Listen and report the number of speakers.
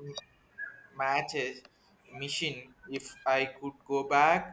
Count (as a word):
one